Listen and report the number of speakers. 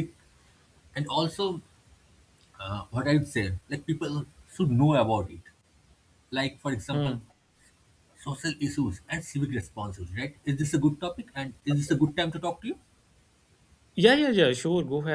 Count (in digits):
2